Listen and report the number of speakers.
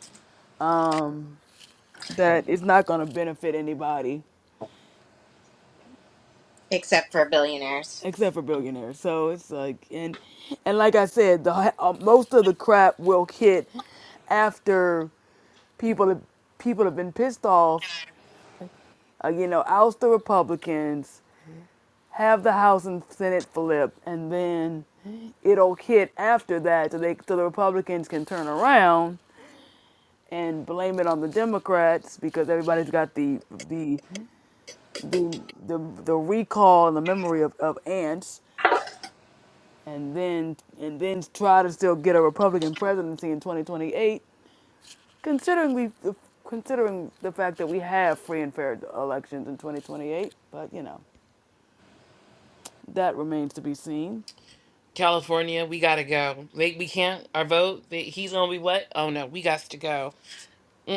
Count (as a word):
three